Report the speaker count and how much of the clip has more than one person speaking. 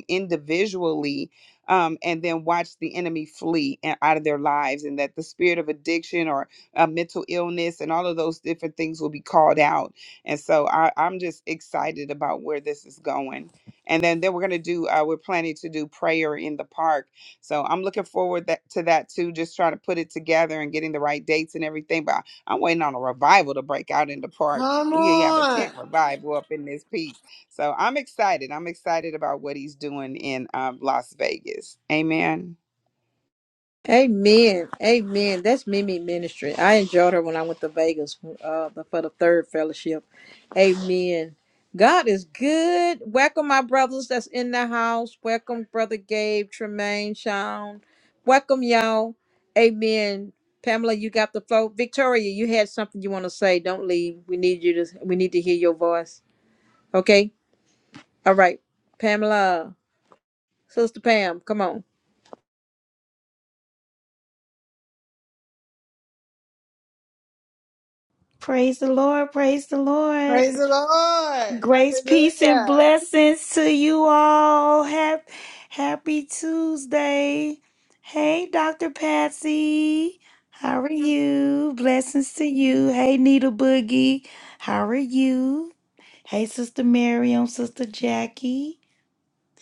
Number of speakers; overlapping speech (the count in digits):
4, about 3%